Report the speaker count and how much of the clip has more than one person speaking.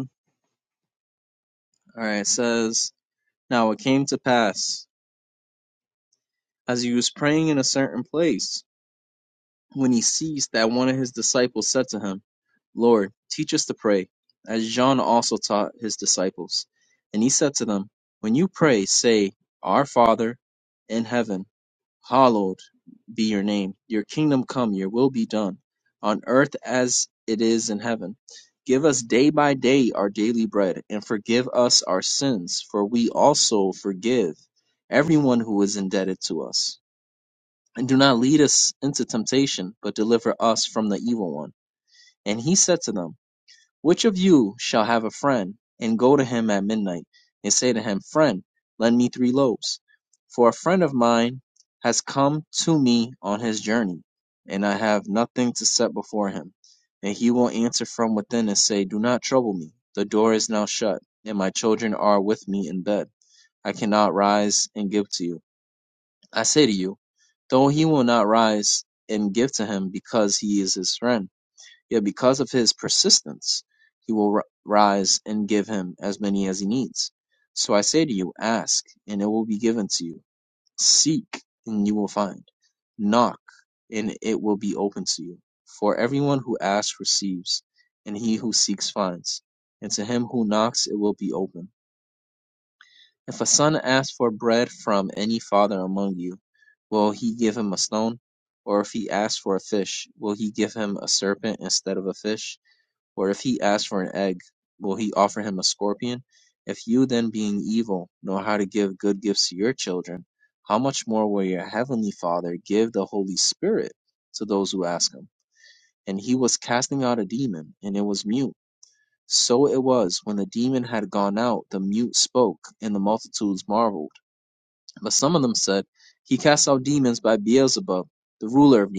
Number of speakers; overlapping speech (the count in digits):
1, no overlap